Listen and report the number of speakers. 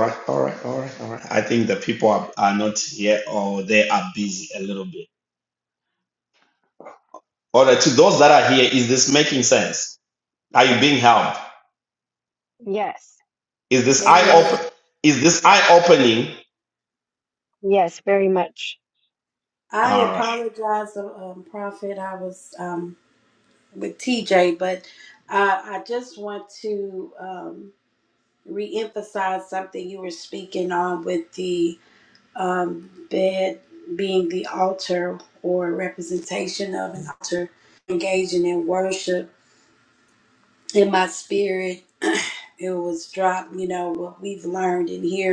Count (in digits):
3